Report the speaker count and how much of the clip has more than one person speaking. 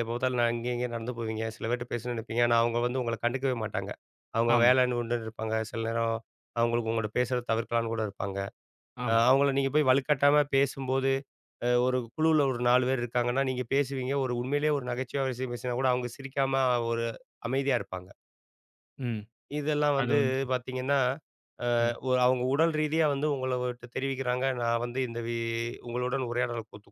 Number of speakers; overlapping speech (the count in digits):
2, about 3%